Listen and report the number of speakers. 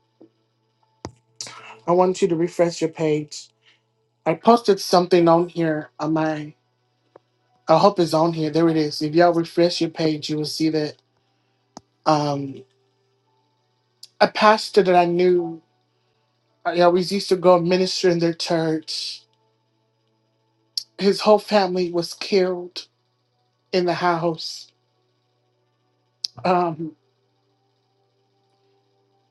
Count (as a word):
one